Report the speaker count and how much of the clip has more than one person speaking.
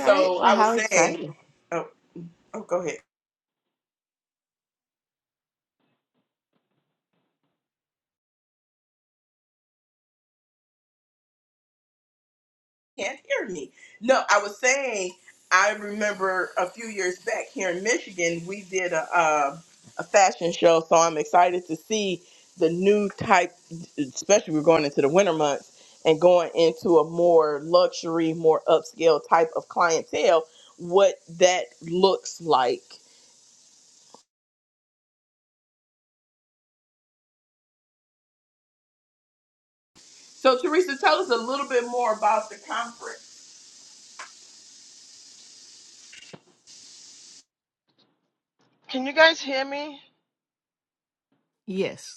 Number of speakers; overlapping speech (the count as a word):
three, about 2%